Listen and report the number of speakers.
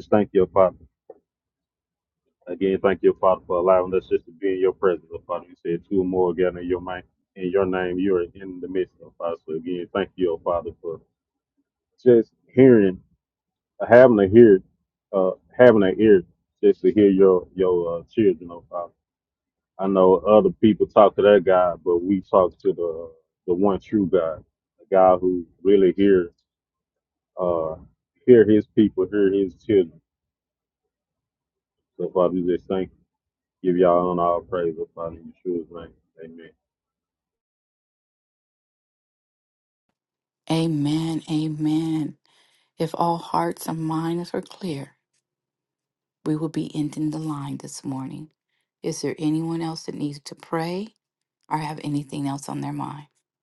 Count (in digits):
2